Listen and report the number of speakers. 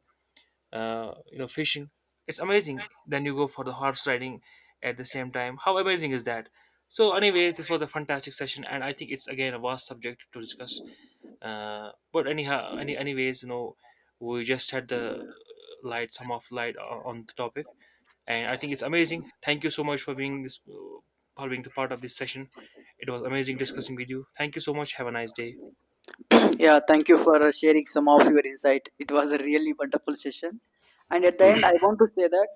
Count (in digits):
2